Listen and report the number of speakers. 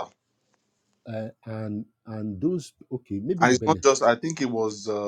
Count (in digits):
2